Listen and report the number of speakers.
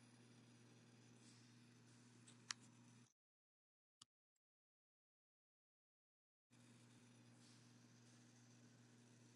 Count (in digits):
0